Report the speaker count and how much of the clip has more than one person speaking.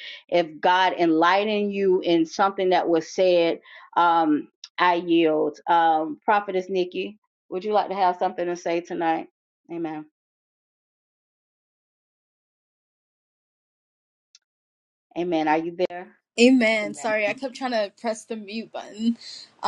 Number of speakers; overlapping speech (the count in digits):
2, about 3%